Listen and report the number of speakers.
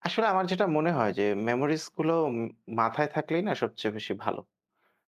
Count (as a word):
one